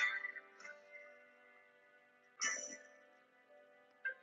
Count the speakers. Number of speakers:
zero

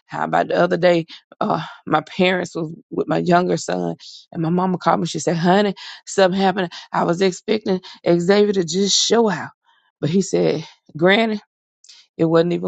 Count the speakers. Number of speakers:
one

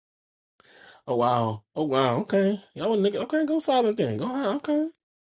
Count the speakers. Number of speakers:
one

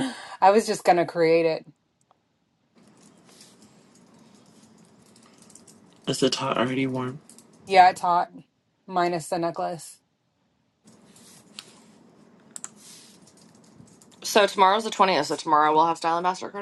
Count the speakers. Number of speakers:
three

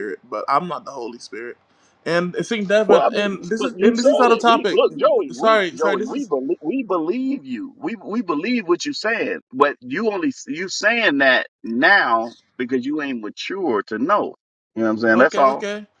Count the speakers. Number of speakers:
two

